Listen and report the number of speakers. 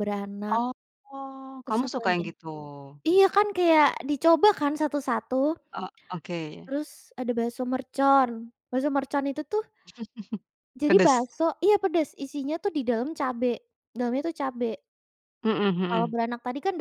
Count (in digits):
2